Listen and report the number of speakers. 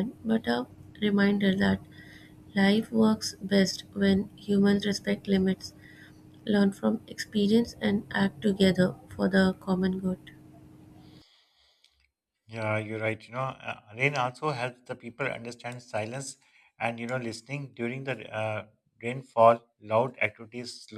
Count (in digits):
2